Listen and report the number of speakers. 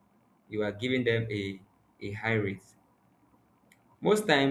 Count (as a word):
one